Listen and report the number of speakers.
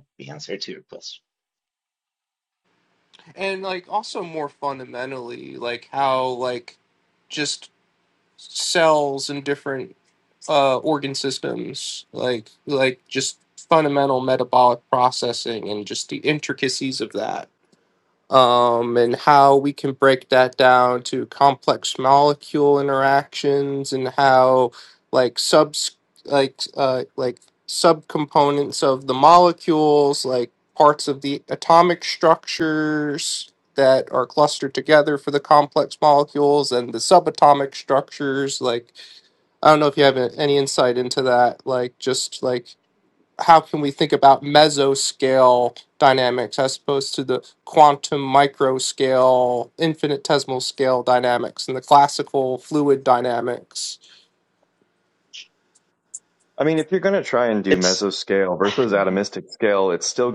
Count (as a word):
three